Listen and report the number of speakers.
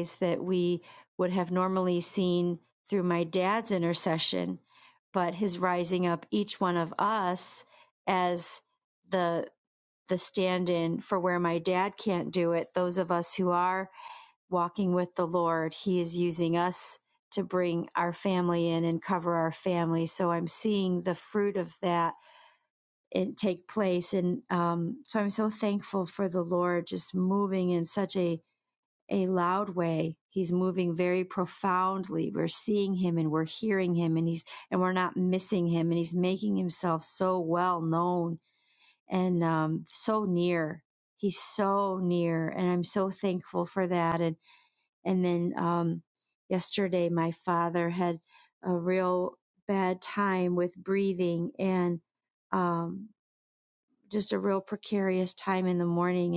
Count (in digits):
1